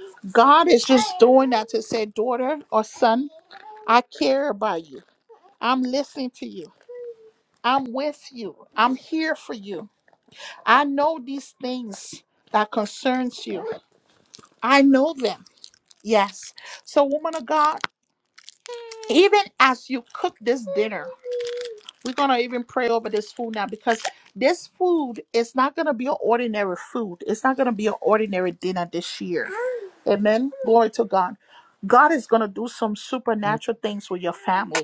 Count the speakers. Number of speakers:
1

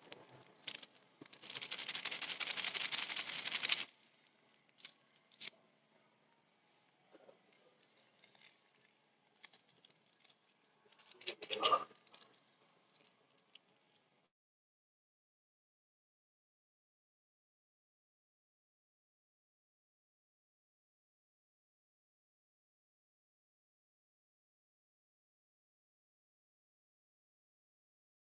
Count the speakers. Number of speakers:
0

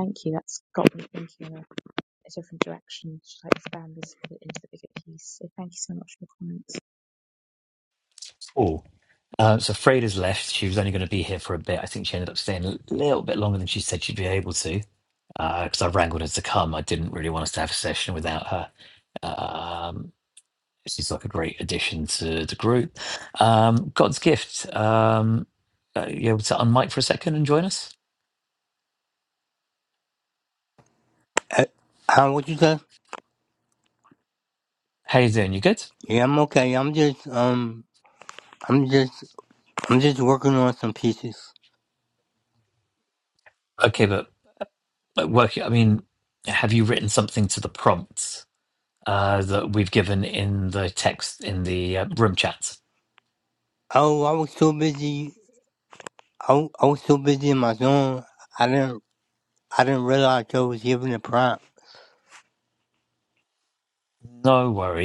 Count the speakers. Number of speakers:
3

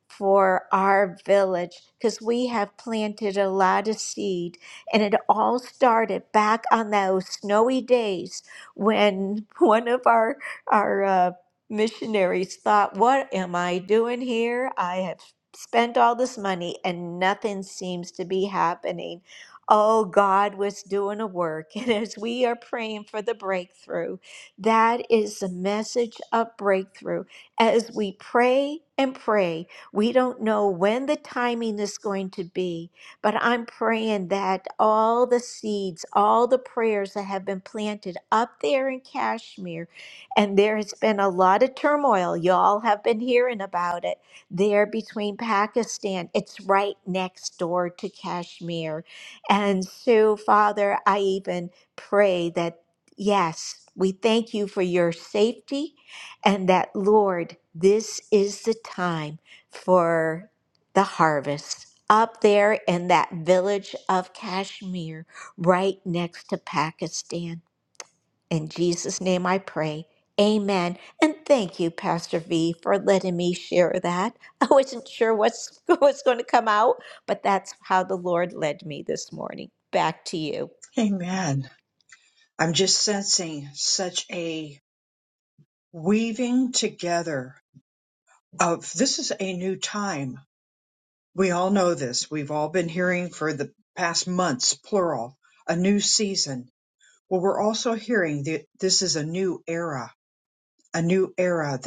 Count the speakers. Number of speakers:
2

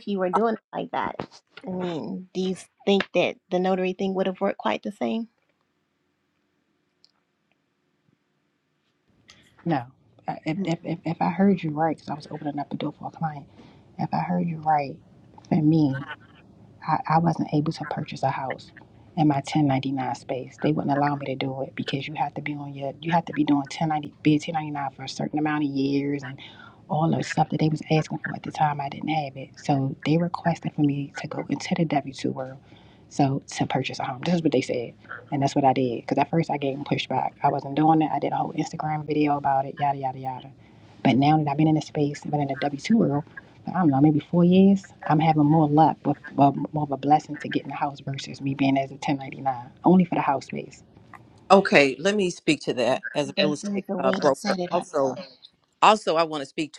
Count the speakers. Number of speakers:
3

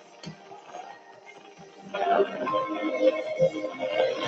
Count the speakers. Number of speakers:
0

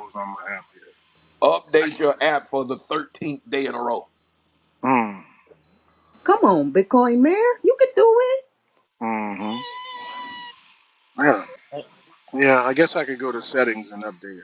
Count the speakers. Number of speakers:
3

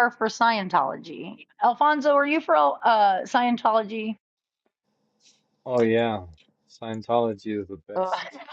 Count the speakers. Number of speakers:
2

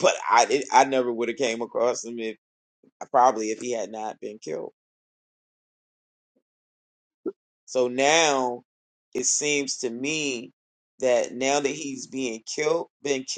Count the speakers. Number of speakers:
1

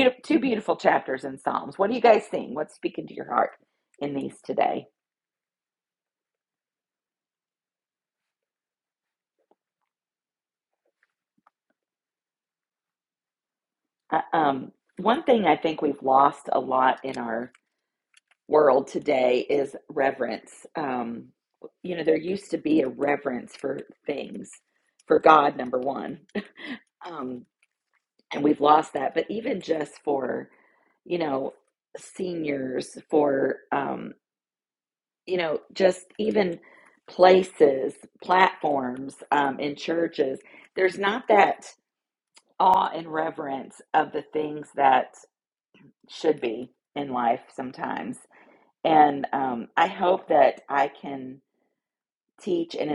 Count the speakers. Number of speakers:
1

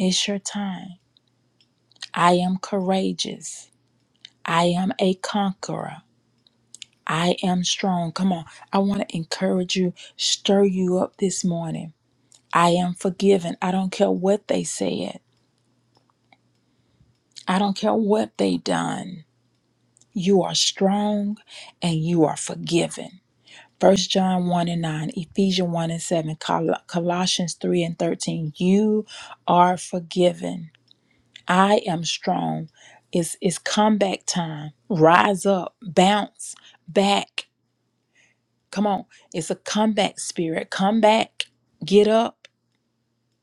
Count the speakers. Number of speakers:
1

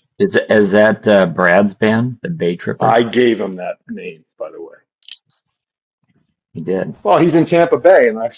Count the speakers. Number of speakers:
2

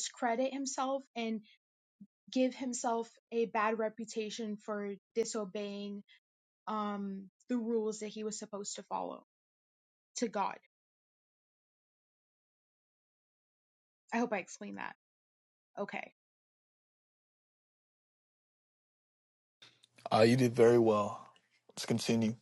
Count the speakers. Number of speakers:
2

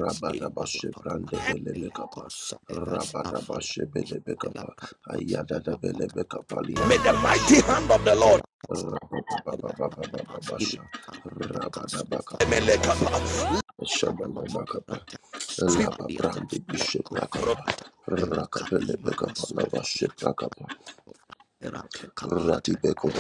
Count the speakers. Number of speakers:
3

